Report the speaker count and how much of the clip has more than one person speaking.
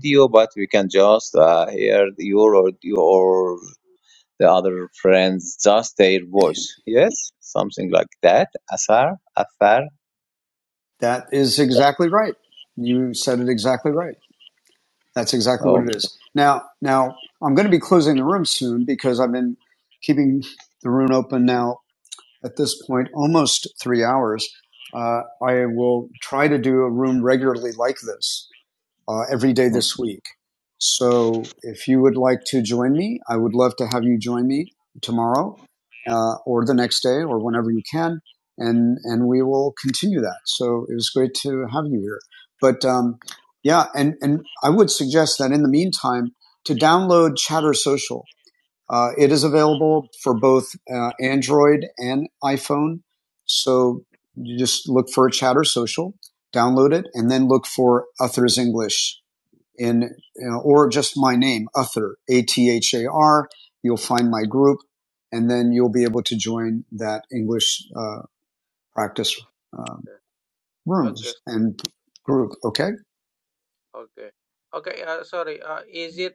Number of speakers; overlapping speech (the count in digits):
3, about 1%